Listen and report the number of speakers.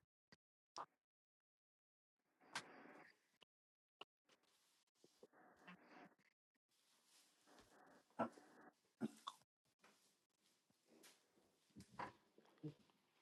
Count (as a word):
zero